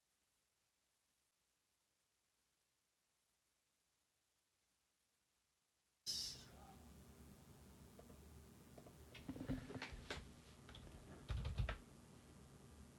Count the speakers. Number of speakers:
zero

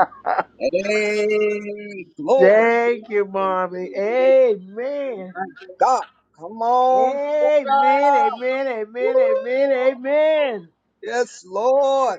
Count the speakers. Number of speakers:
two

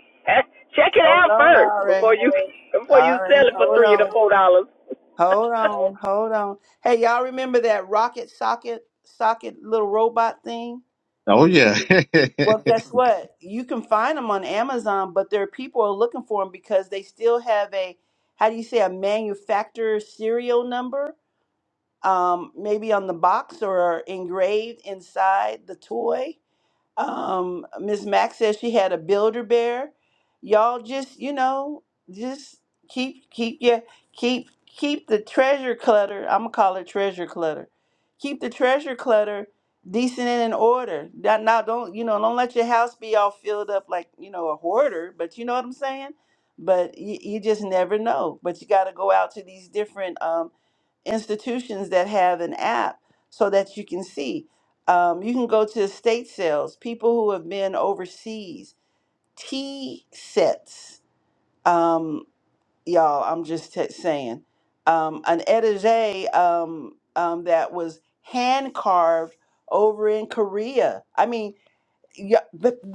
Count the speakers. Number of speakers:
three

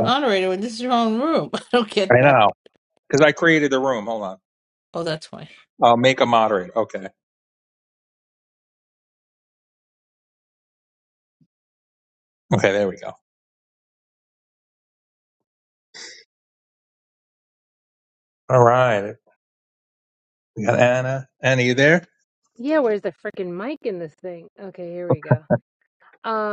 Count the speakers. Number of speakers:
three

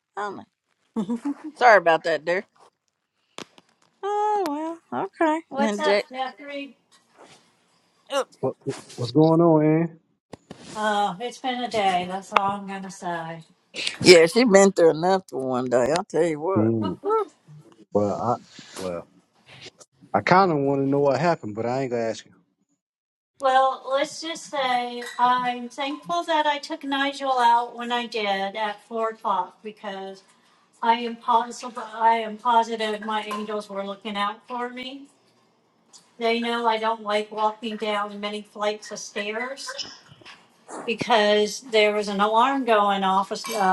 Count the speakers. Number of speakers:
three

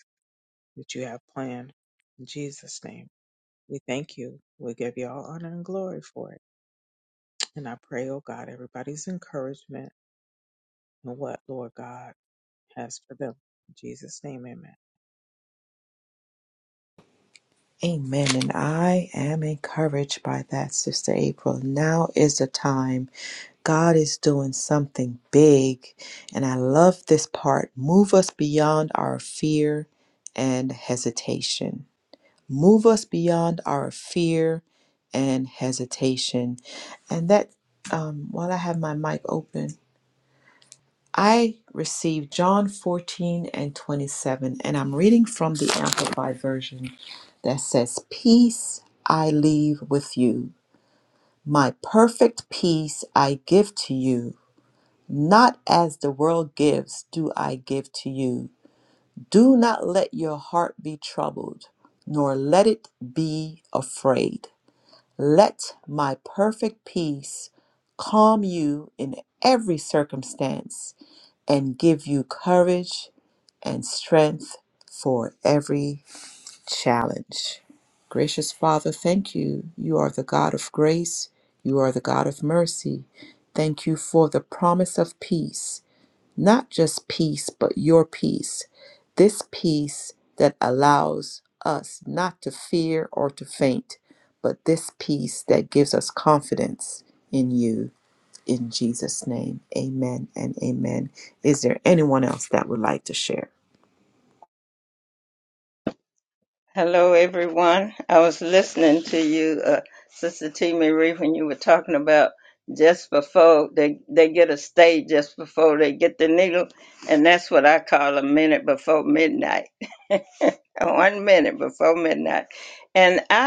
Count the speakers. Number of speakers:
three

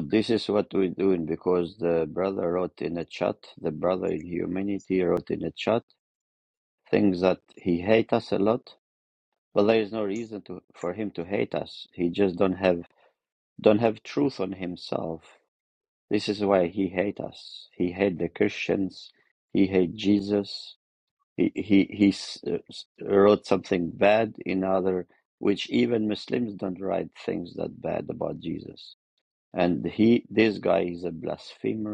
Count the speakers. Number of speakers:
one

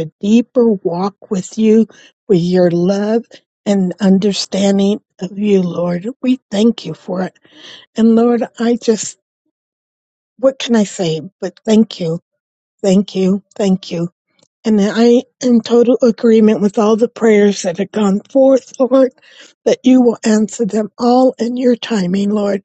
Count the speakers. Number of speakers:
one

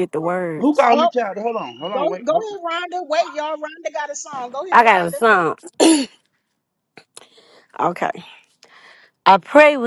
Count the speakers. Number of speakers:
three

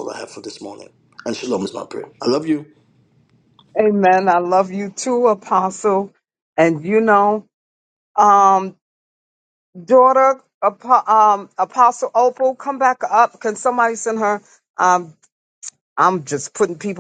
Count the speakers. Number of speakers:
two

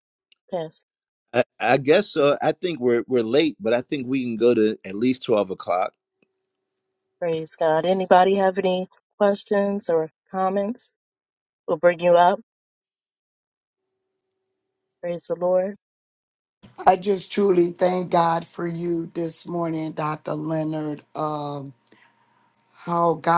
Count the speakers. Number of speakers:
three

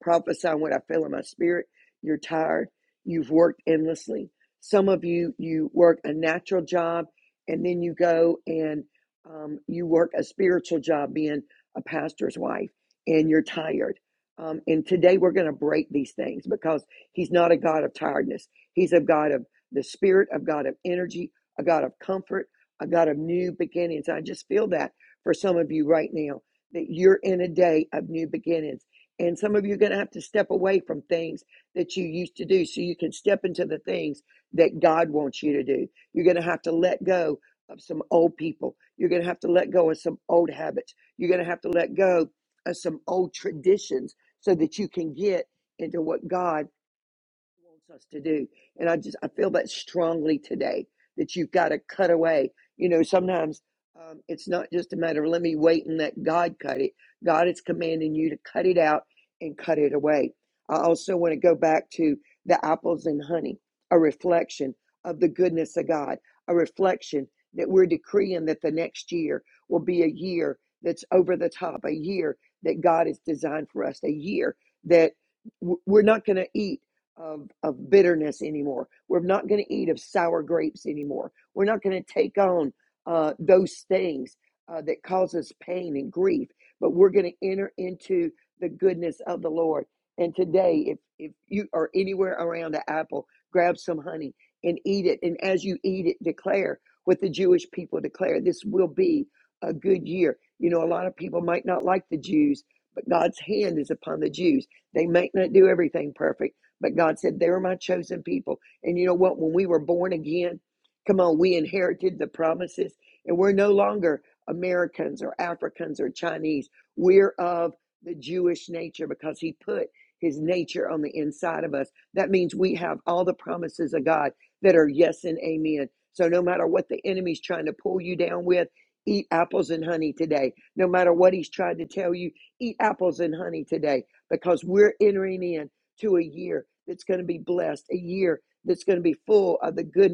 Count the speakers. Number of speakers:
one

